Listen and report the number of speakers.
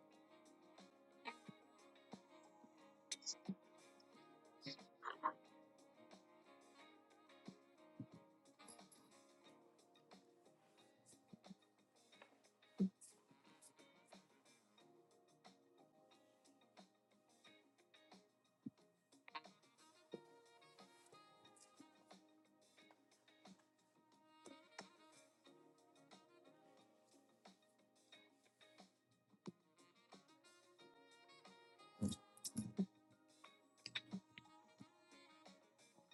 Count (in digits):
0